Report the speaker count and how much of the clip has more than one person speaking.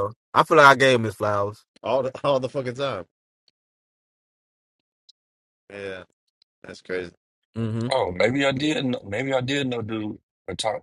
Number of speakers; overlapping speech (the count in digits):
3, no overlap